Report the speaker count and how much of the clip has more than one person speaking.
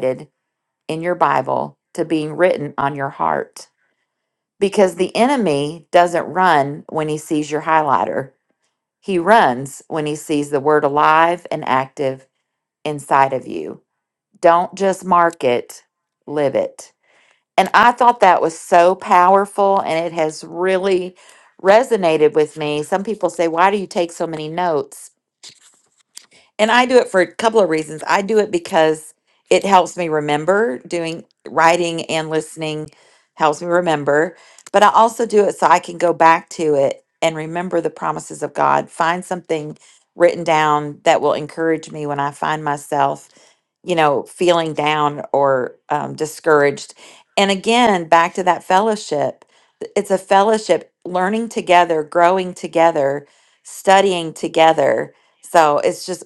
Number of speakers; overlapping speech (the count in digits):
1, no overlap